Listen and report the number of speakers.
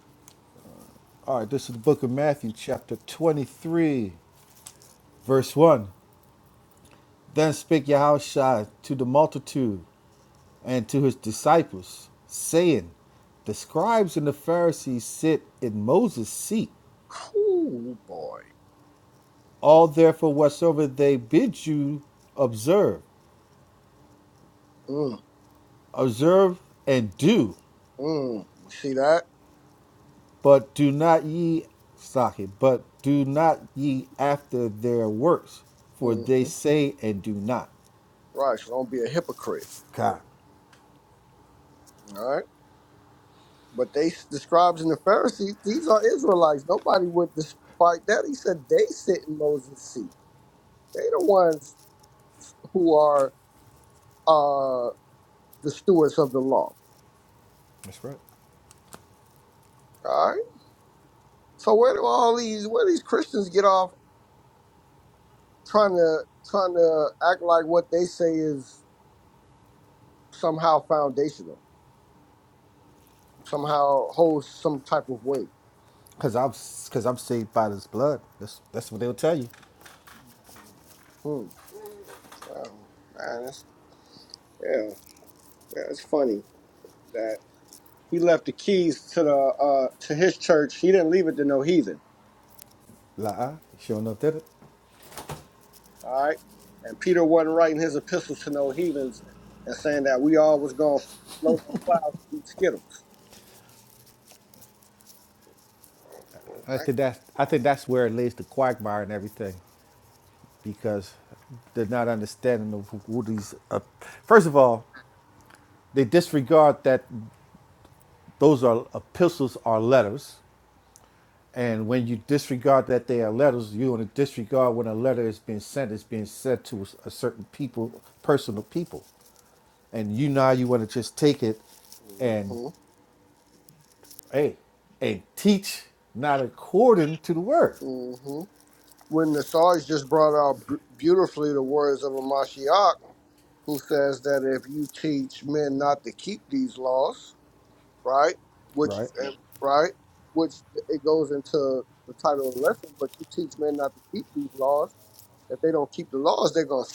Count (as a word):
two